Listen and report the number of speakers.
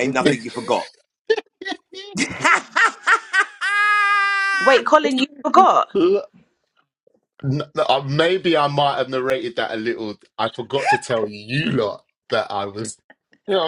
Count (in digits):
3